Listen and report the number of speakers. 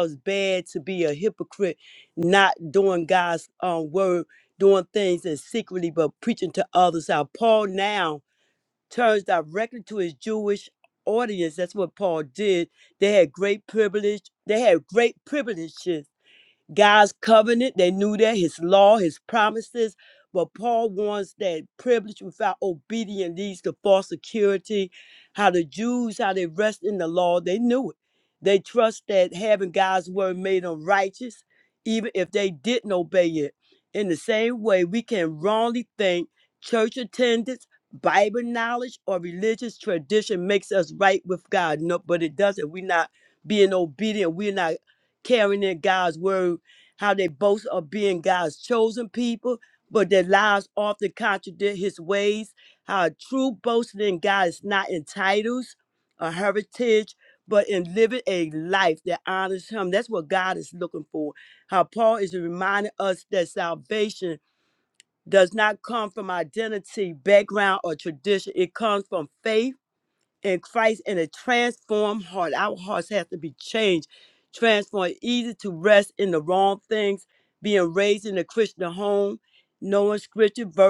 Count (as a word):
one